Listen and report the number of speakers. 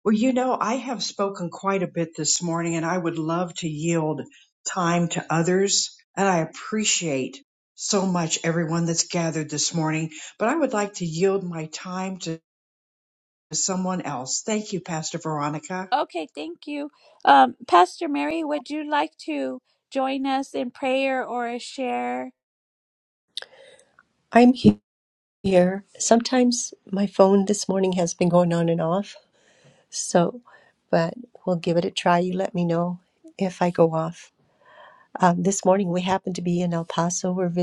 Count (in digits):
3